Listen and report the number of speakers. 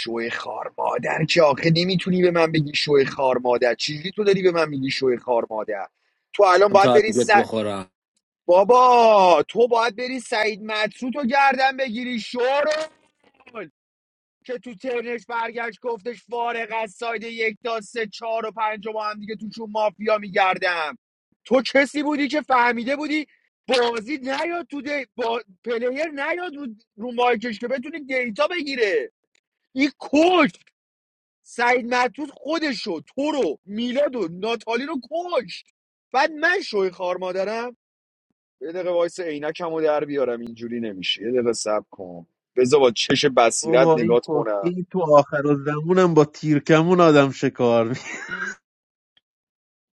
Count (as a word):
three